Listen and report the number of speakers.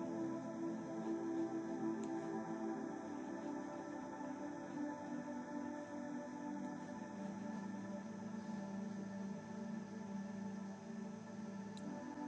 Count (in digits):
0